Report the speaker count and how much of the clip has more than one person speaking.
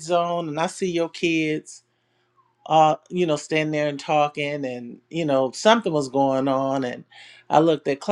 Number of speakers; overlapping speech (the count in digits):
1, no overlap